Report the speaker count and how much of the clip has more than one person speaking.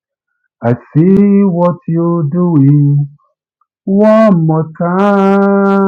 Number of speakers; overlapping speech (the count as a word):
one, no overlap